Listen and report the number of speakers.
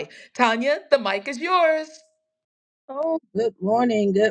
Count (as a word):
two